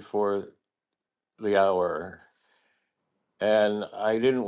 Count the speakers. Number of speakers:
1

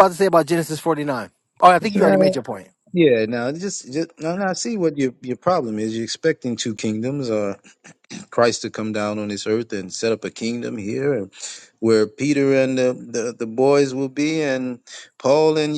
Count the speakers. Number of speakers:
2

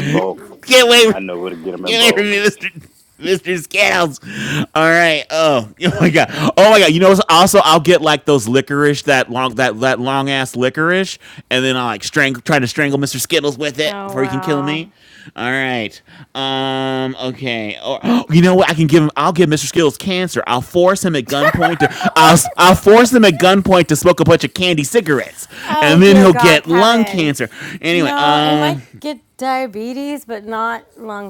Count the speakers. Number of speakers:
3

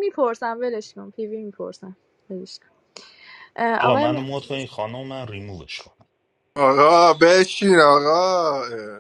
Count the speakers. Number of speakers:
3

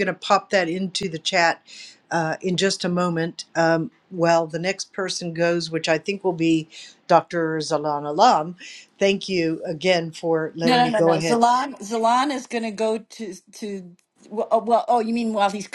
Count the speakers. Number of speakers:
2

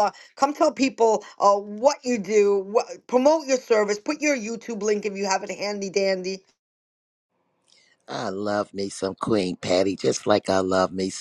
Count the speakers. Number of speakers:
2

